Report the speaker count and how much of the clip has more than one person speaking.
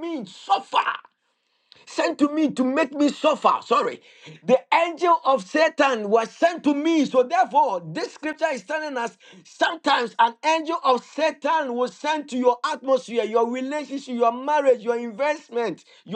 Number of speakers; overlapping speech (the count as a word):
one, no overlap